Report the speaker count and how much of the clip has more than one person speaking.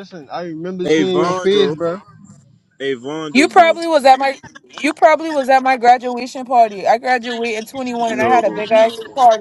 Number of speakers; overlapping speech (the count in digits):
3, about 19%